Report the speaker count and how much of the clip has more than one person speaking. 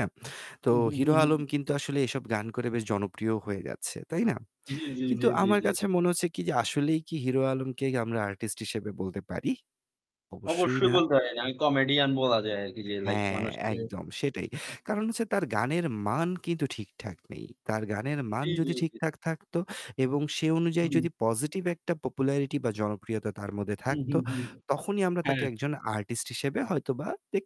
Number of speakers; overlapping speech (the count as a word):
two, about 14%